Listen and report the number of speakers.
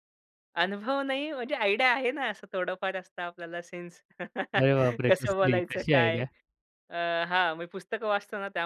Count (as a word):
two